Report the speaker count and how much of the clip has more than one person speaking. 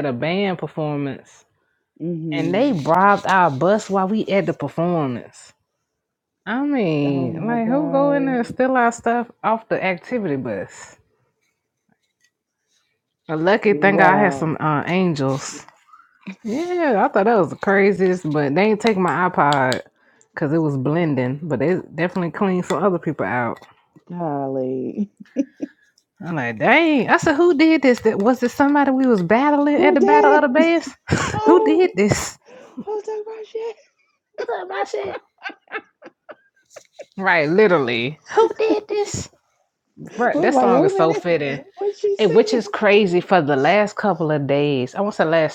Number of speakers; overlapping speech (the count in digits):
2, about 12%